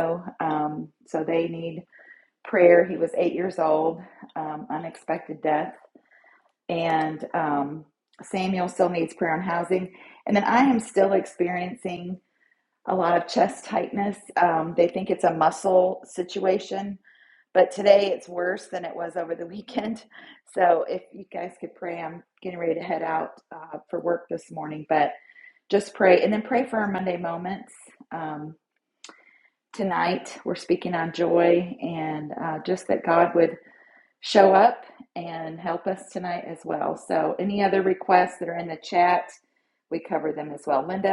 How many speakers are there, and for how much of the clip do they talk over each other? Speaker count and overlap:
1, no overlap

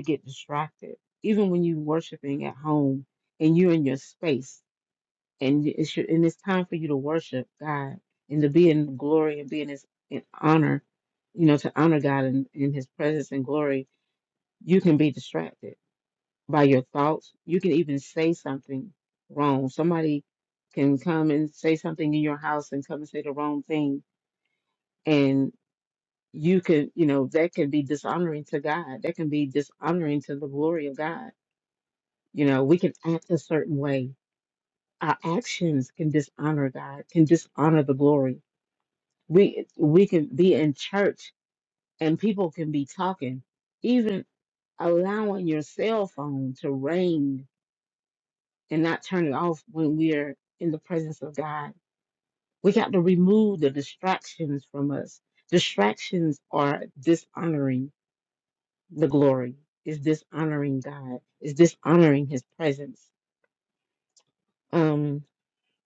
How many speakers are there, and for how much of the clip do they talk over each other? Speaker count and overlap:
1, no overlap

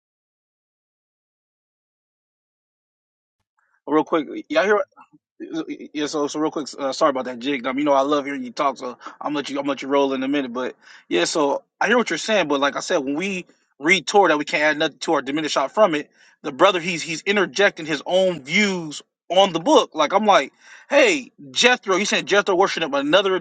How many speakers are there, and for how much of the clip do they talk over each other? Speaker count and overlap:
1, no overlap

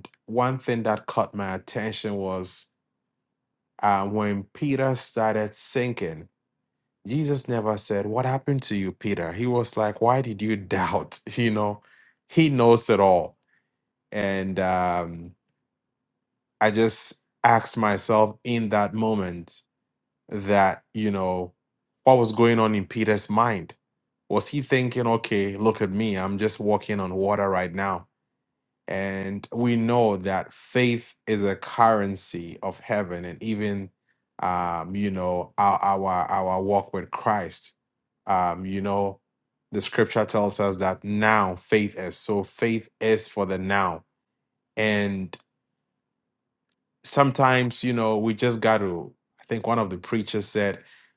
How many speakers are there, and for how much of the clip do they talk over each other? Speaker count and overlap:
1, no overlap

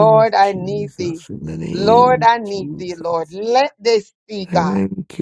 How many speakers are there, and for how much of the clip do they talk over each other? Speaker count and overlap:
2, about 57%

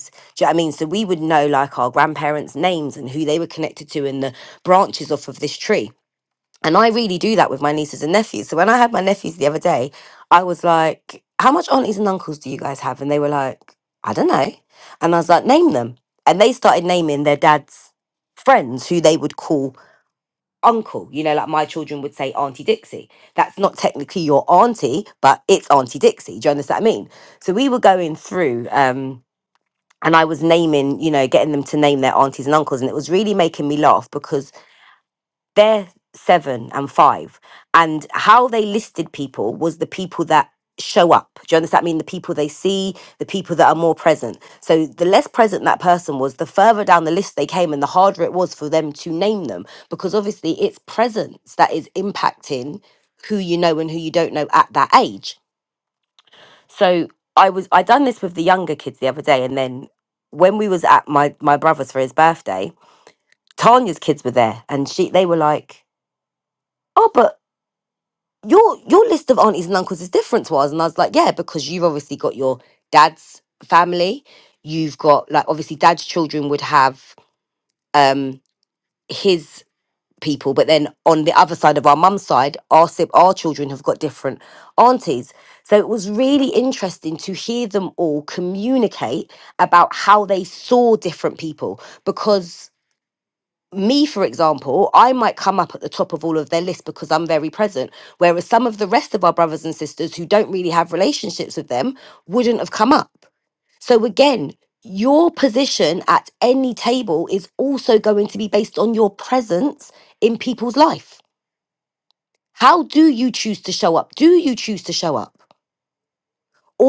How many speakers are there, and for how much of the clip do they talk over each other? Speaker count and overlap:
1, no overlap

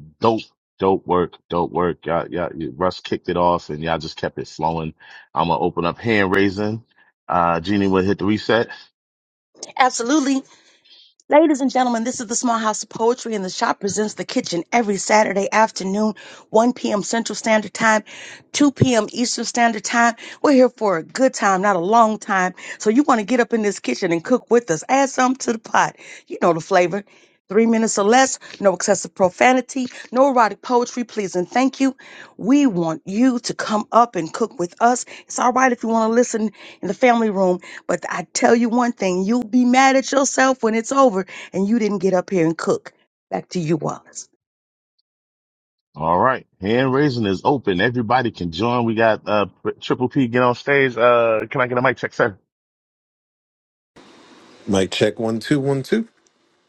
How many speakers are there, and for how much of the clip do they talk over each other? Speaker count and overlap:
3, no overlap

